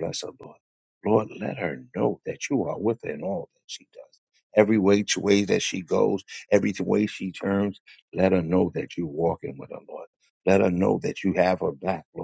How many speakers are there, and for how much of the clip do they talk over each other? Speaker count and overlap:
1, no overlap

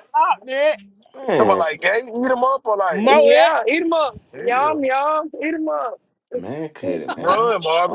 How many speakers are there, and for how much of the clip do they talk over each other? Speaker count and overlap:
4, about 23%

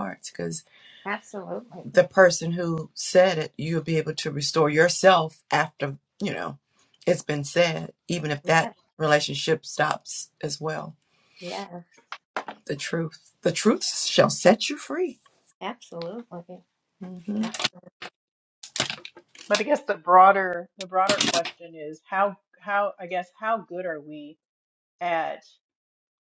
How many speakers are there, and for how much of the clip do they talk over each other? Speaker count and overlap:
3, under 1%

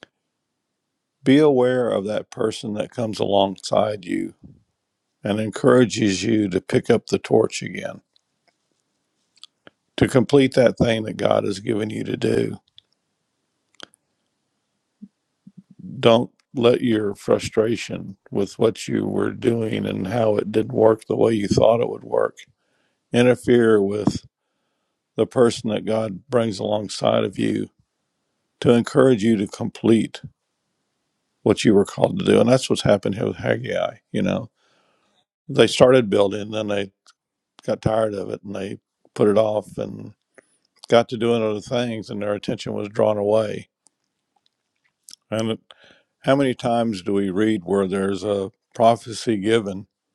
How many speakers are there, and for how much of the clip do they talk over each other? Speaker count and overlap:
1, no overlap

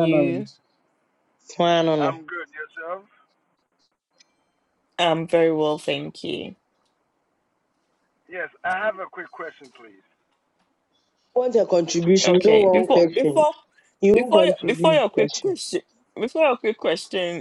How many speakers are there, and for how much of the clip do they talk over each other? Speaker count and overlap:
3, about 15%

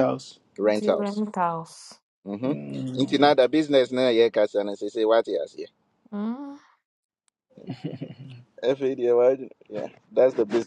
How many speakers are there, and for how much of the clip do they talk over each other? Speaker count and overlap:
3, about 9%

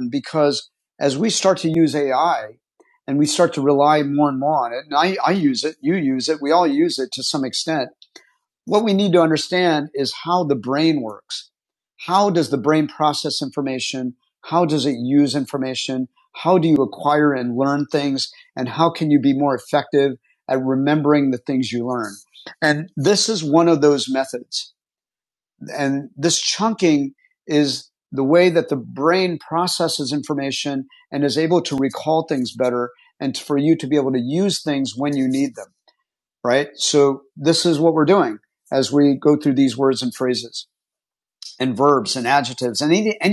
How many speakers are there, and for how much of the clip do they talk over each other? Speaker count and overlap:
1, no overlap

